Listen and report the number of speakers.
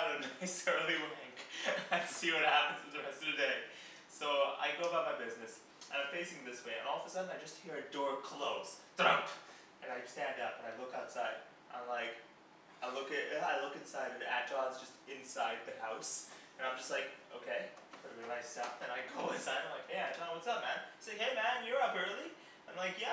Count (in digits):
1